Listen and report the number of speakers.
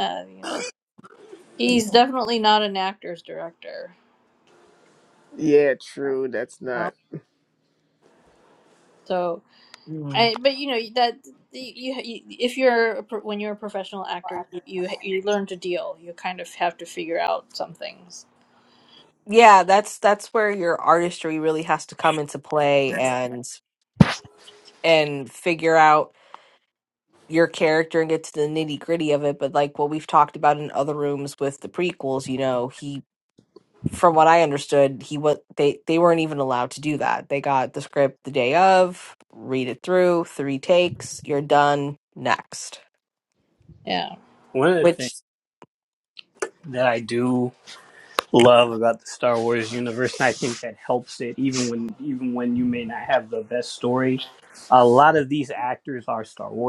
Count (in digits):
4